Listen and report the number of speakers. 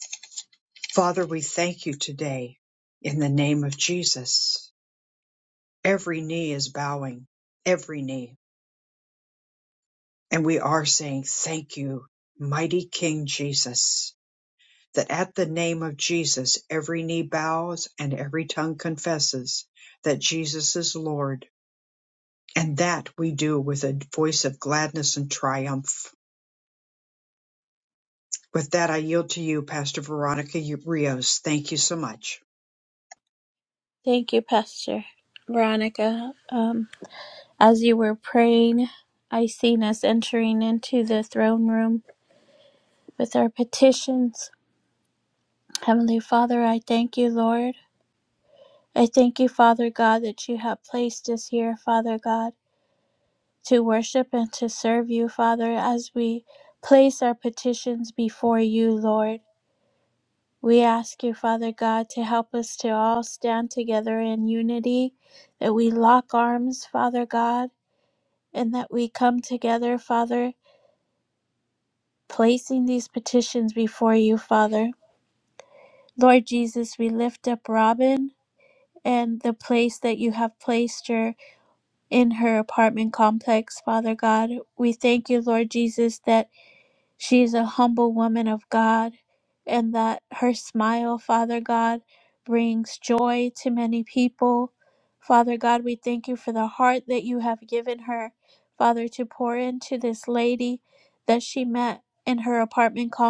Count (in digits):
2